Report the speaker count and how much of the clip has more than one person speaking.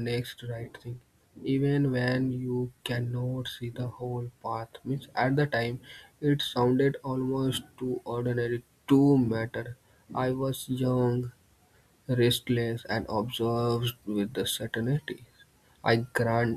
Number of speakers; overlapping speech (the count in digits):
1, no overlap